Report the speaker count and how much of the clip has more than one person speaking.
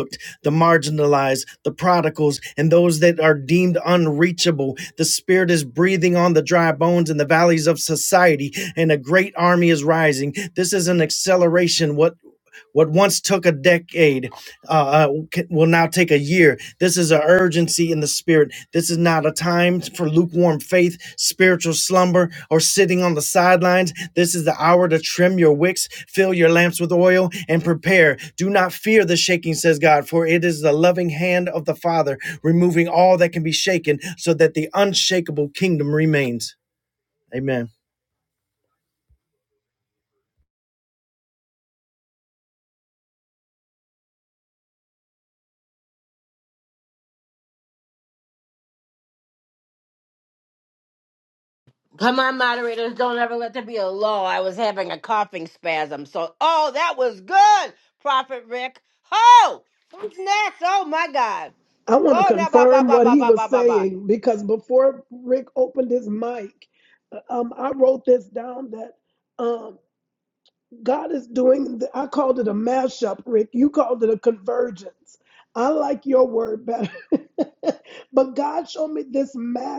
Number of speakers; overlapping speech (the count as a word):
three, about 2%